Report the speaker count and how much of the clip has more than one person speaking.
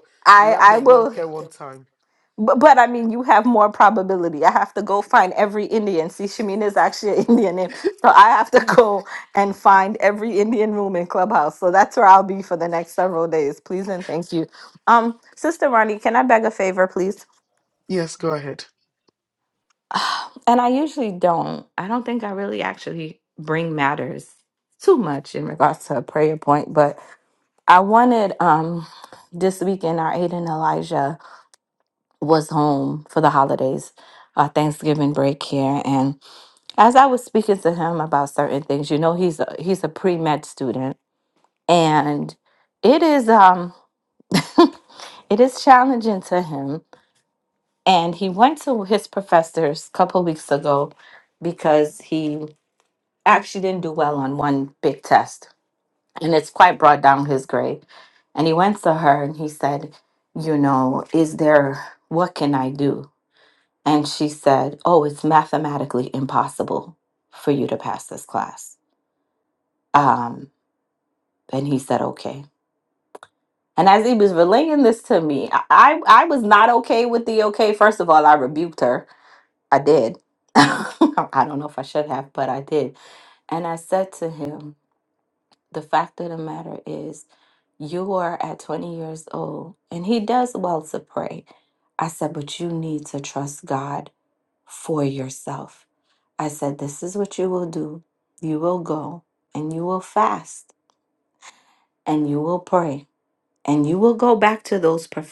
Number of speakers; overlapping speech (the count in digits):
2, about 1%